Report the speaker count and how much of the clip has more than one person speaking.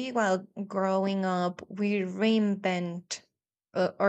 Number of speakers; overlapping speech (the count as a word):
one, no overlap